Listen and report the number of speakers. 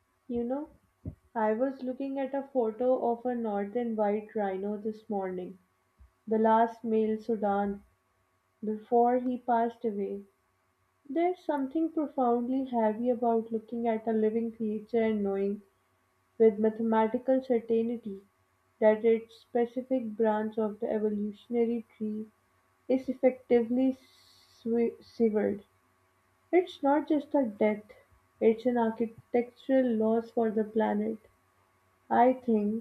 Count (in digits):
1